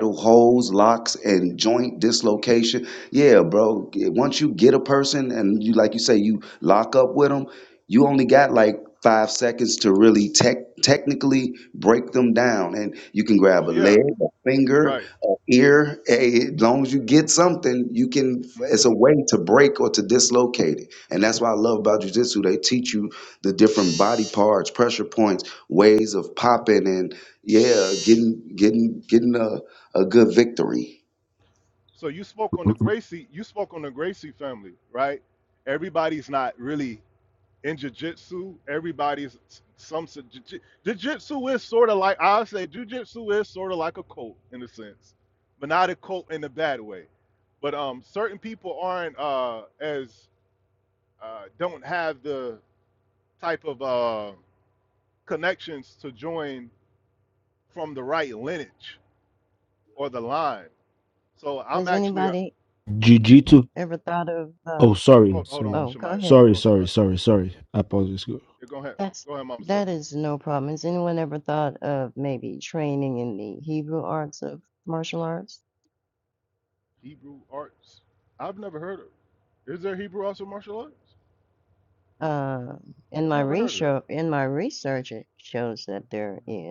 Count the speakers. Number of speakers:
four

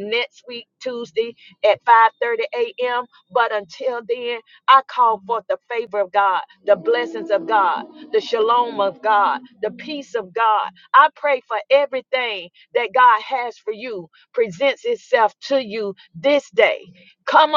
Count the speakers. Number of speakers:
one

